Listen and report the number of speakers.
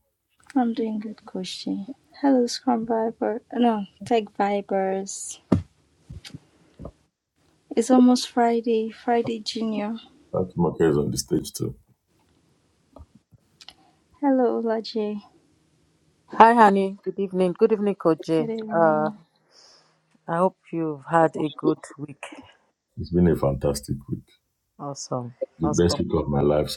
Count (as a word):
three